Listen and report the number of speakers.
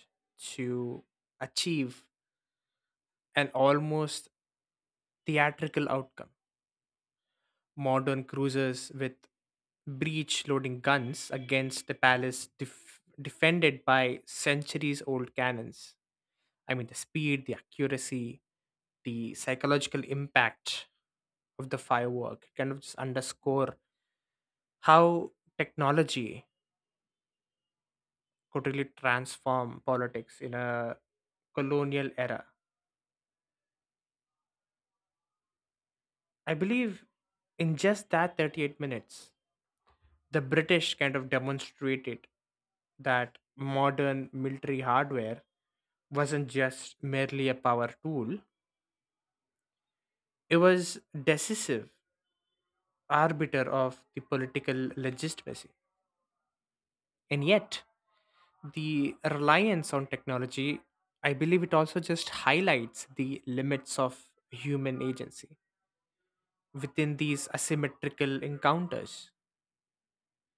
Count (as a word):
one